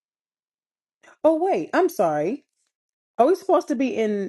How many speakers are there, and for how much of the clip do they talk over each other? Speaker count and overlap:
1, no overlap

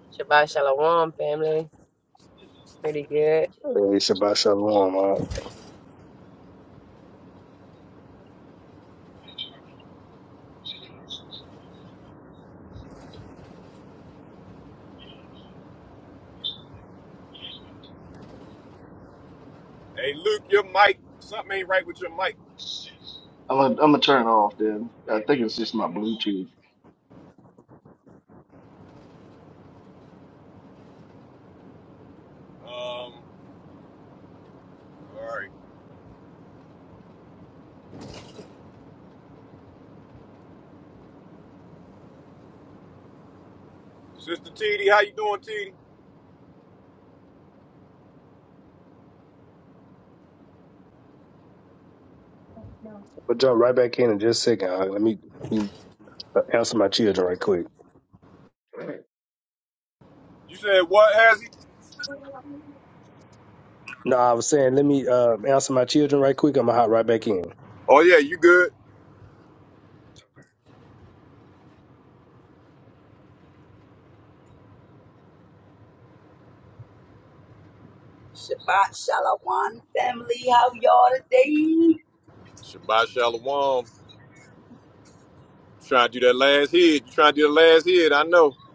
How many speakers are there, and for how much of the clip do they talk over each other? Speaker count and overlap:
5, no overlap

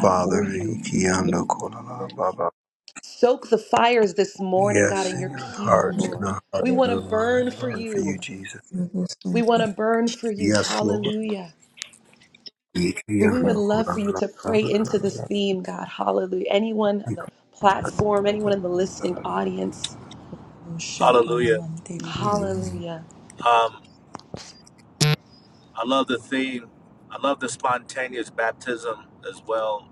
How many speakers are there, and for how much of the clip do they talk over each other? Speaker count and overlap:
4, about 30%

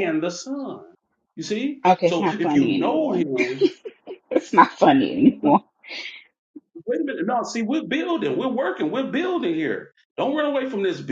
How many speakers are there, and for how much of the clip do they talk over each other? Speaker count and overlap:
2, about 13%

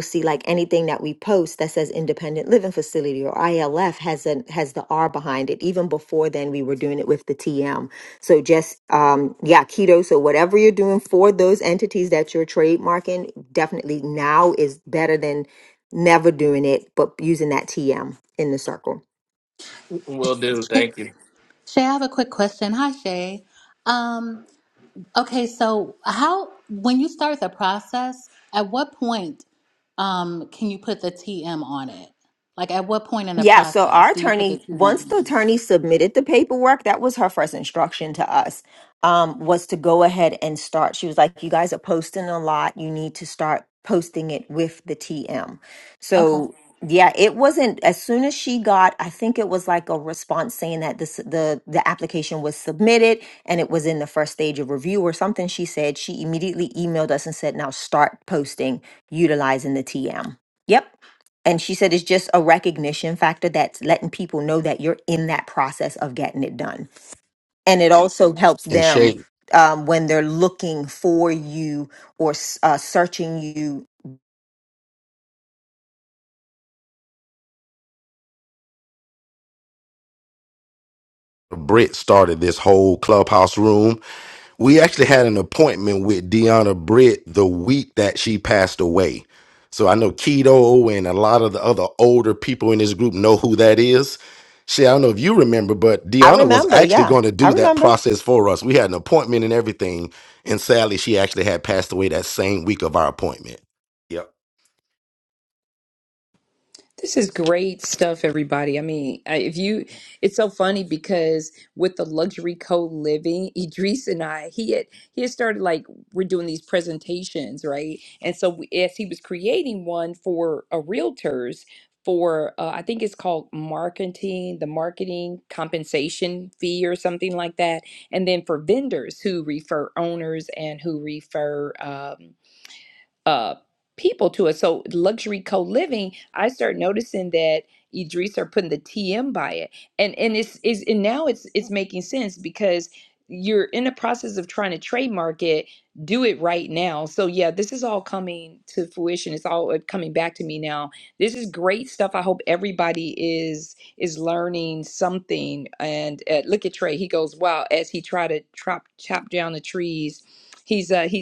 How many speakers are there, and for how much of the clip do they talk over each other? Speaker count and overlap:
5, about 3%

